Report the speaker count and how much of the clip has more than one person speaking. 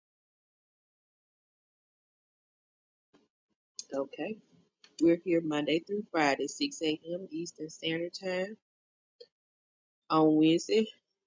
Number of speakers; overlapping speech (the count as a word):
one, no overlap